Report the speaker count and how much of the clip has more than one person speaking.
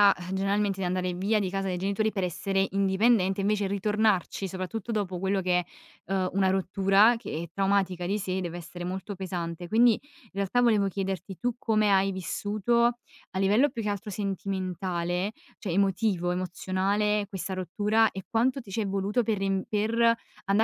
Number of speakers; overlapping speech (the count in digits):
1, no overlap